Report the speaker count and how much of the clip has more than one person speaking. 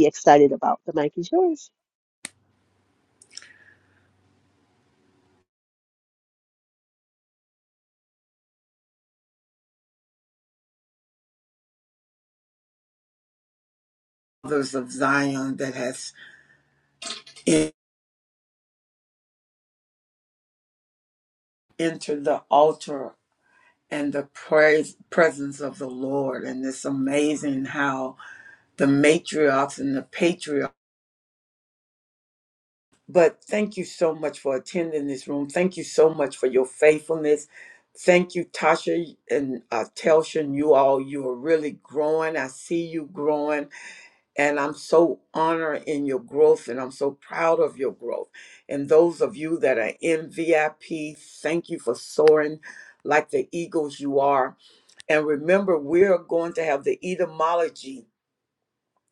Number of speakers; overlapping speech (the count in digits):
2, no overlap